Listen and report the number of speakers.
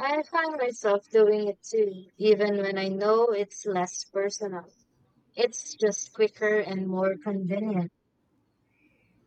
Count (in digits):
1